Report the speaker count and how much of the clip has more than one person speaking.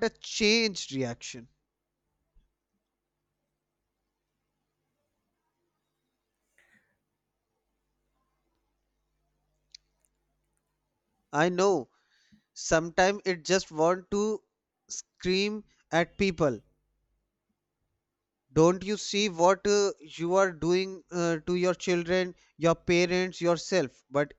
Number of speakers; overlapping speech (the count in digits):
1, no overlap